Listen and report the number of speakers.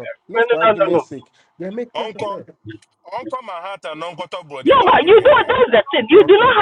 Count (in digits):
3